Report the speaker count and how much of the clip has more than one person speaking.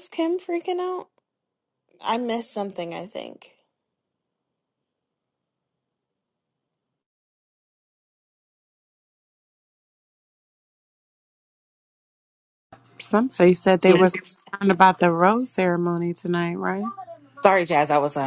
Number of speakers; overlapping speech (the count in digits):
3, about 1%